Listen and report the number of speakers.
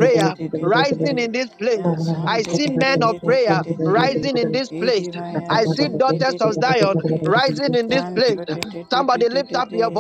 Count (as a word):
two